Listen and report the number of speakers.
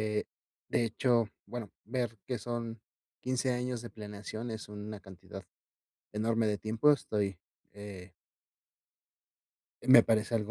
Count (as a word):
one